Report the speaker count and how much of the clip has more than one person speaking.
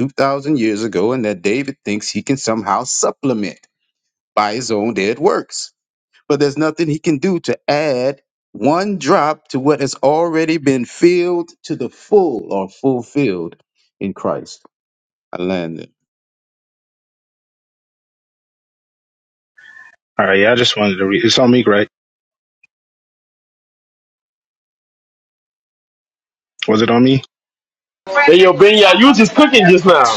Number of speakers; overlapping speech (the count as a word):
three, no overlap